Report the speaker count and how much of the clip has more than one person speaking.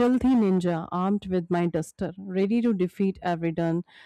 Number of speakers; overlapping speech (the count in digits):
1, no overlap